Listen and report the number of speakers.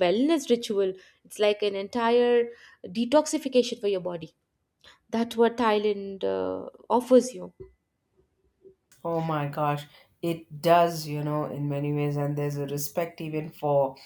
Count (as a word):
two